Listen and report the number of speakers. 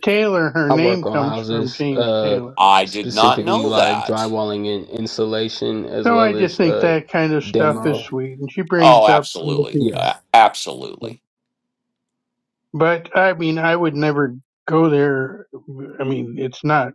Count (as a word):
three